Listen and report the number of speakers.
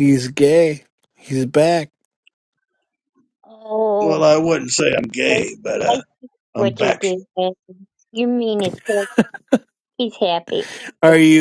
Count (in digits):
3